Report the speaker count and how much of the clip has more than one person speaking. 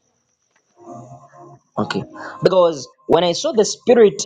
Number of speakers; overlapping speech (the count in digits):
1, no overlap